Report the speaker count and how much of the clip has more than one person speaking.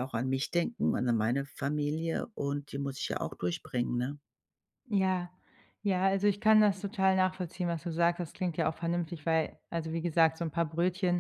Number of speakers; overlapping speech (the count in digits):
2, no overlap